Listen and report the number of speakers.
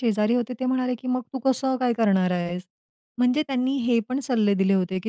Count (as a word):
one